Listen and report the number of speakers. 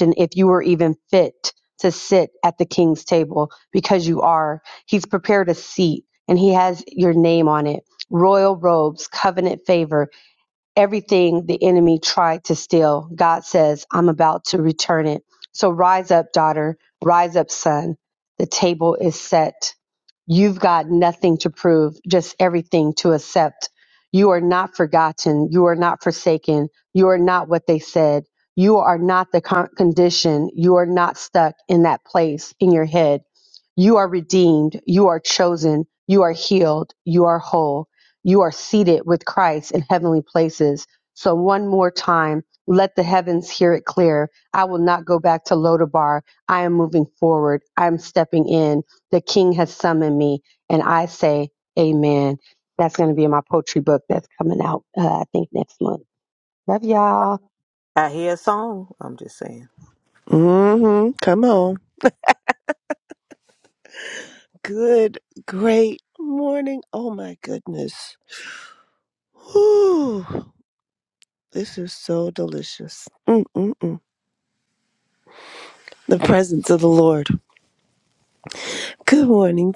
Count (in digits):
3